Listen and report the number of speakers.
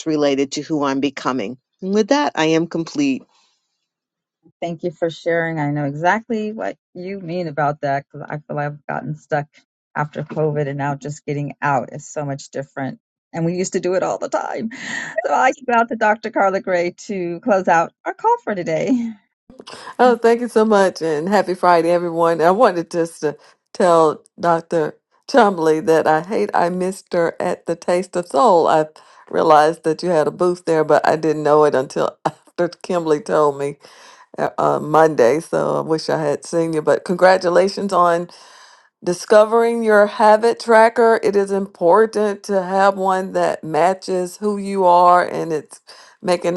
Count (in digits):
3